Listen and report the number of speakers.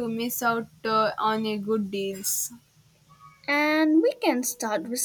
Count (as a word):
two